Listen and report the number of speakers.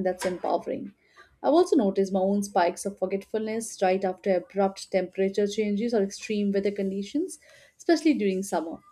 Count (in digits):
1